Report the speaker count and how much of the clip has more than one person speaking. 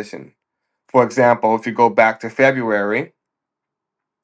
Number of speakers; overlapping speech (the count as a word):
one, no overlap